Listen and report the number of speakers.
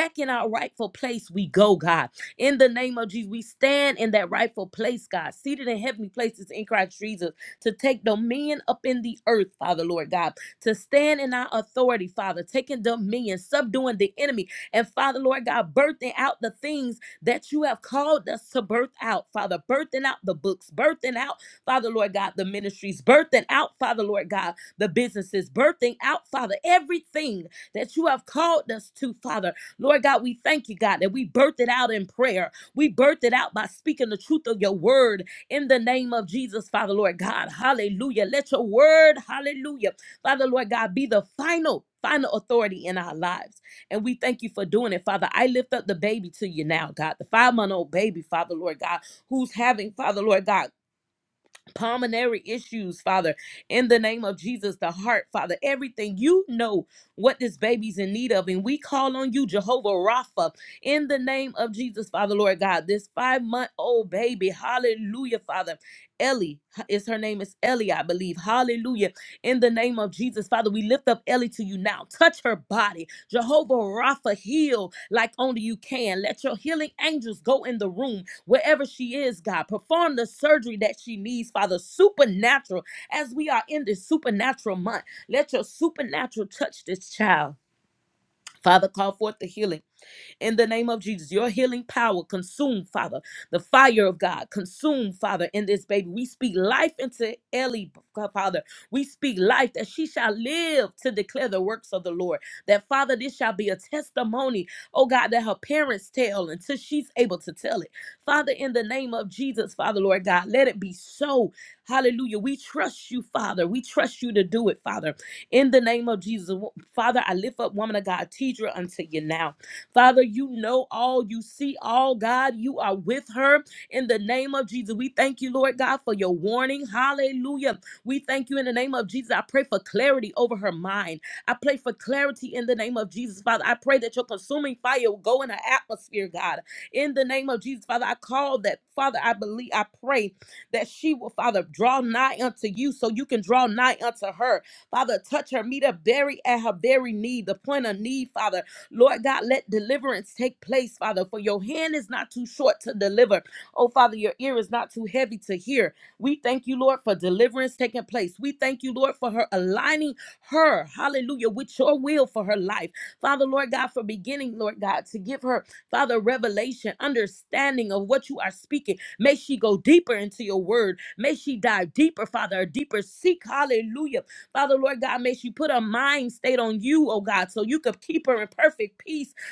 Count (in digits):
1